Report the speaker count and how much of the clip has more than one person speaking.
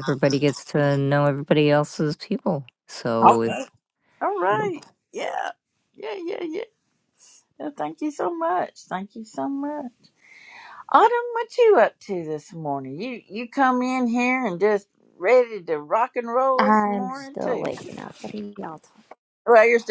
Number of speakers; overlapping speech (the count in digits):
3, about 6%